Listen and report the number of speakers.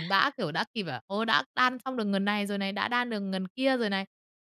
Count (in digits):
1